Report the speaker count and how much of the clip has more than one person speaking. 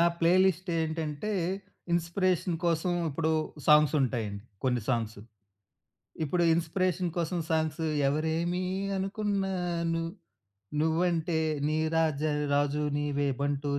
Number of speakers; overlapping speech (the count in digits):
1, no overlap